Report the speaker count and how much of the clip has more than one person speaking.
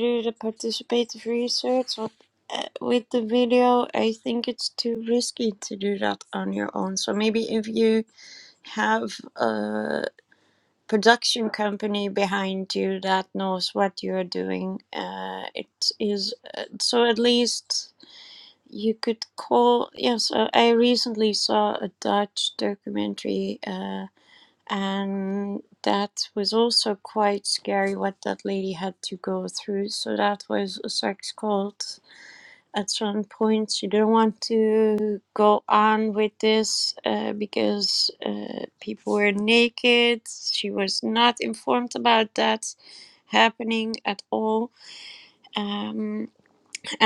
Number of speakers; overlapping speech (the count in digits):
1, no overlap